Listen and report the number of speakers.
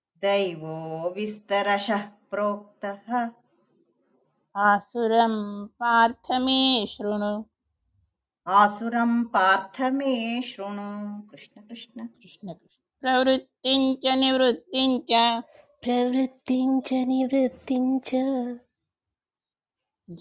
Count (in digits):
3